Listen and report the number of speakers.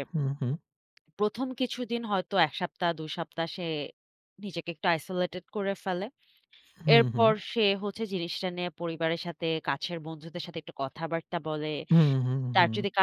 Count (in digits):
2